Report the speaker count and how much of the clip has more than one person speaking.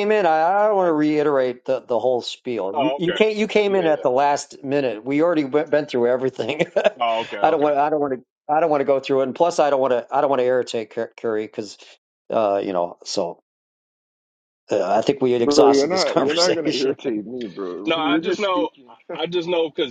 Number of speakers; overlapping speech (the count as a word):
three, about 19%